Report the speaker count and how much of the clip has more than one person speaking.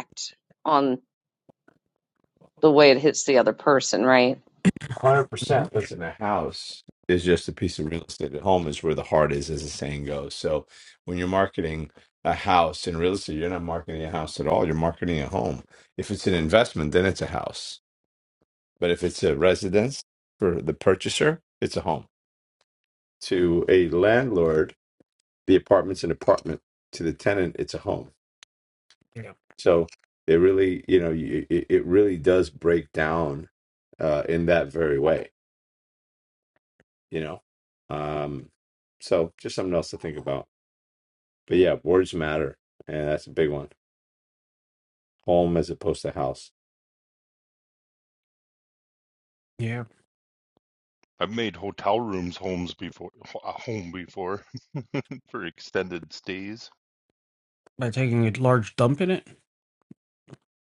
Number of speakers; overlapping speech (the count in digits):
4, under 1%